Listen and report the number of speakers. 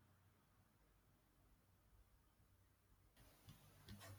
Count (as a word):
zero